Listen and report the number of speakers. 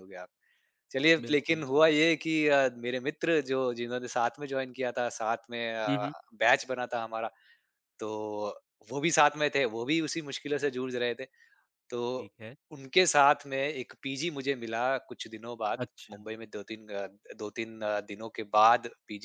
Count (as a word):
two